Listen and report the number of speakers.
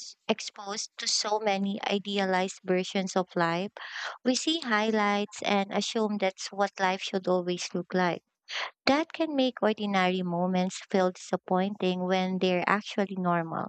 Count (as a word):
one